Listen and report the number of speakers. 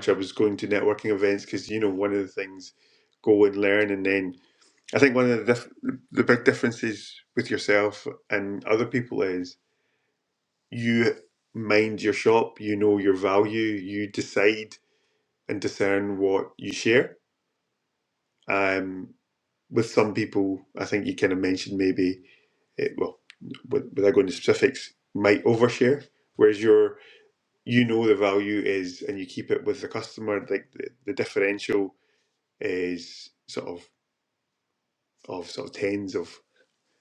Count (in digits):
1